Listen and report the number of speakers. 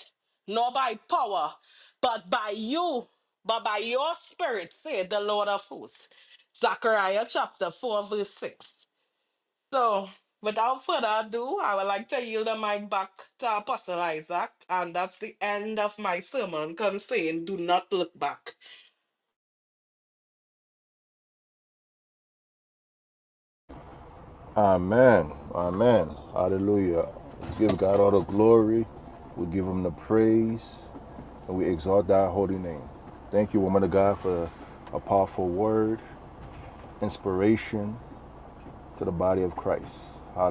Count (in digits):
2